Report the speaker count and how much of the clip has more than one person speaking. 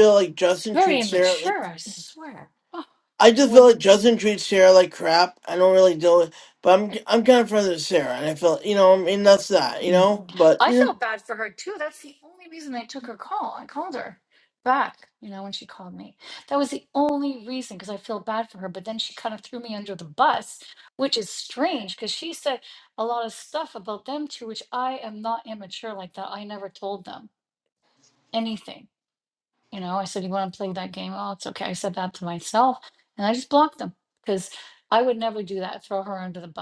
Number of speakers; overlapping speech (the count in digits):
2, about 4%